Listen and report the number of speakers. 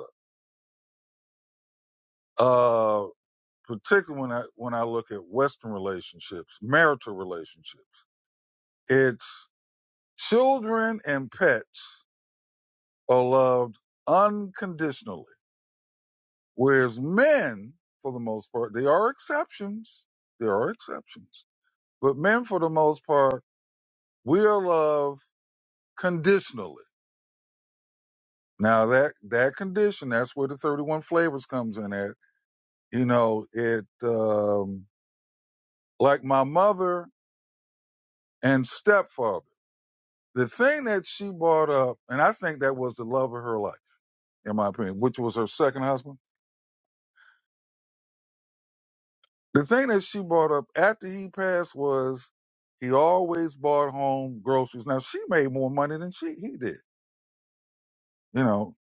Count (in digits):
1